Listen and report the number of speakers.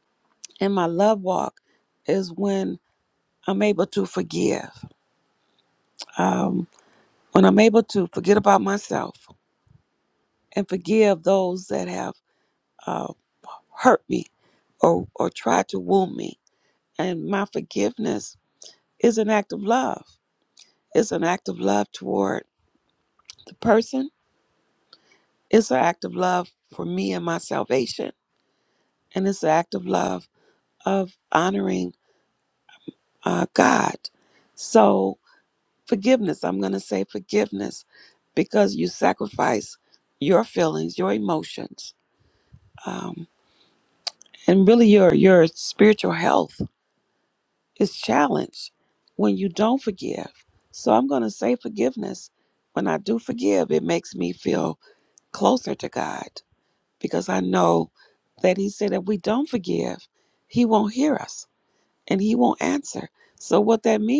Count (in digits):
1